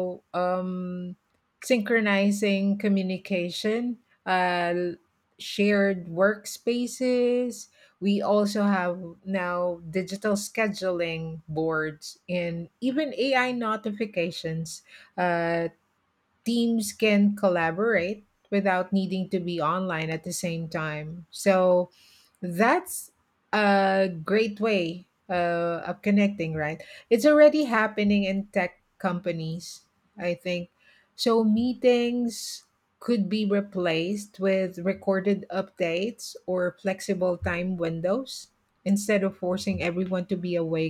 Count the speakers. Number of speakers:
1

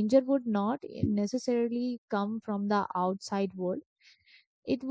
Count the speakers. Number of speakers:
1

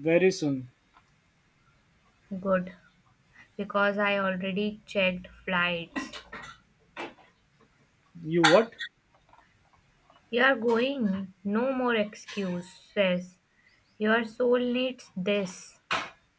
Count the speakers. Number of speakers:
2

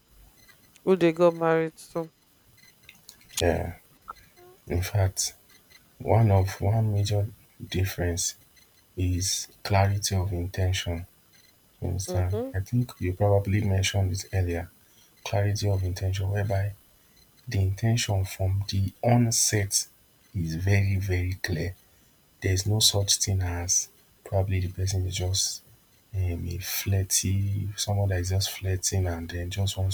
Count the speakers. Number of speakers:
2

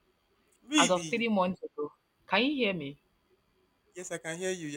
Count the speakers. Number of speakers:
2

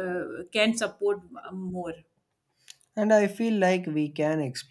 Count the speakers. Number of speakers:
2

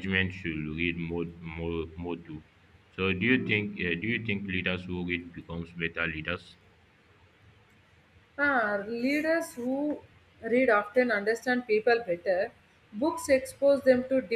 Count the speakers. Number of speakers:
2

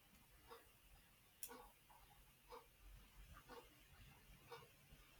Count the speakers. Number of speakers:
0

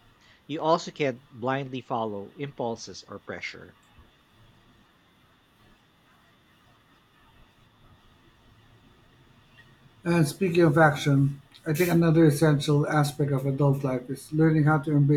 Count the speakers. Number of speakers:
2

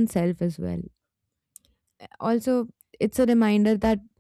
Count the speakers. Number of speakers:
1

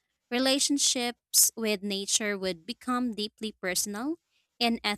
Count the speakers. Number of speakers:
1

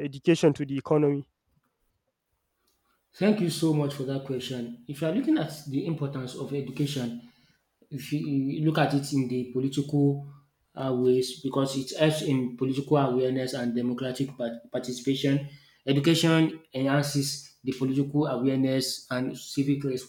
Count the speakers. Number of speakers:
2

